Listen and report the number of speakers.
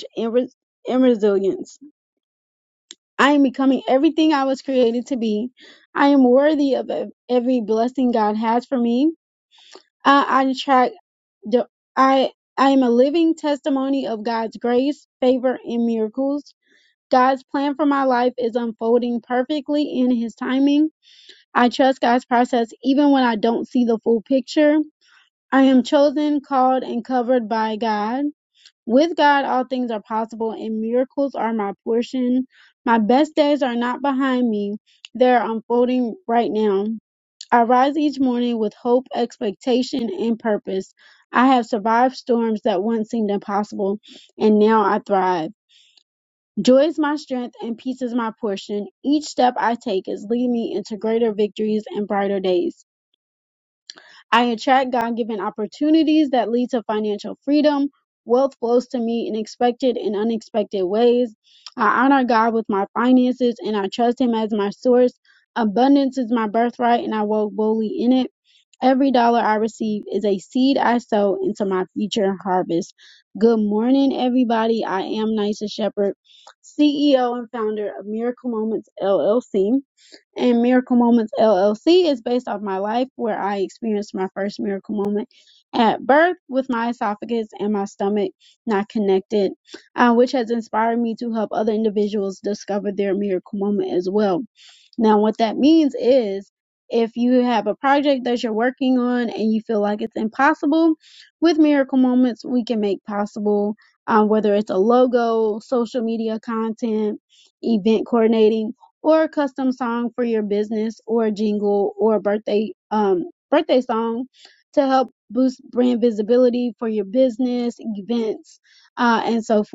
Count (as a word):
one